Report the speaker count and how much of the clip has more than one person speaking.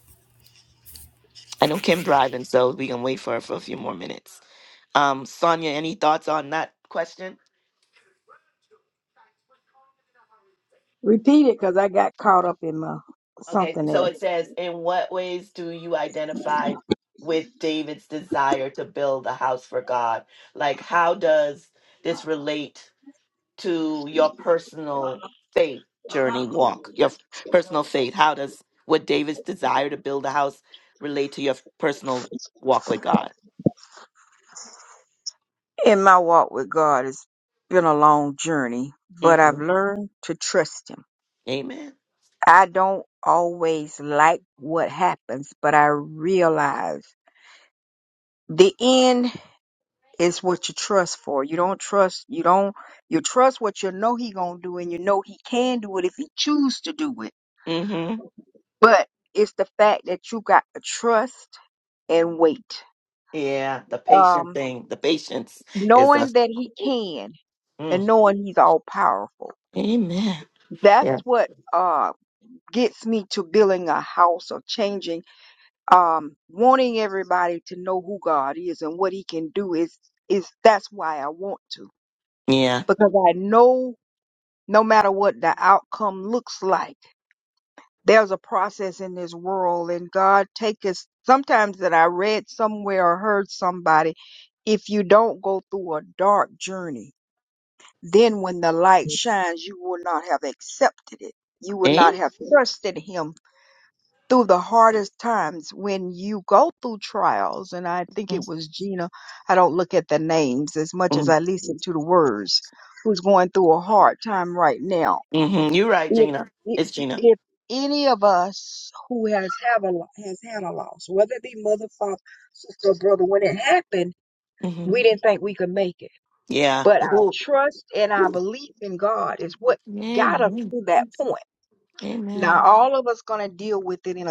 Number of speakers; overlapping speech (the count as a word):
two, about 2%